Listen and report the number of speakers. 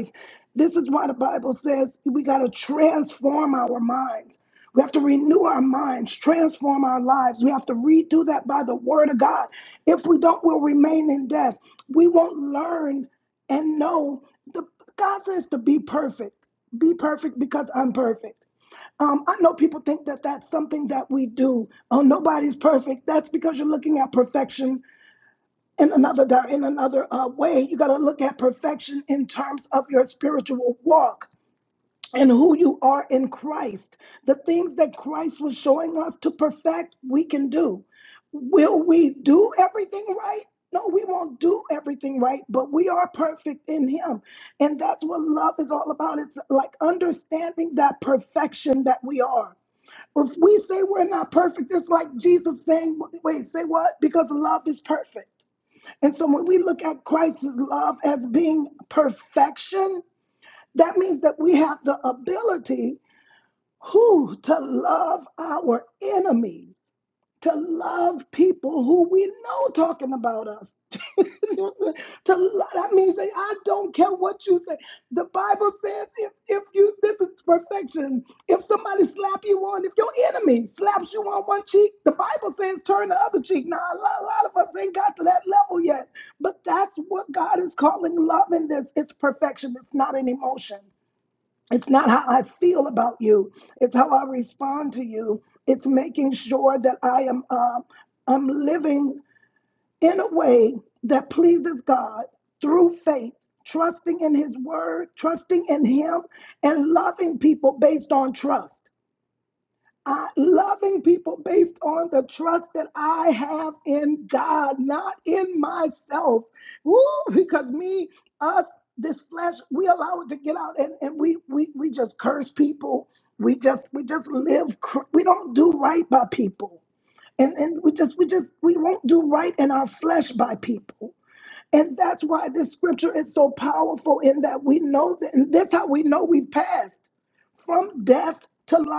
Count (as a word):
one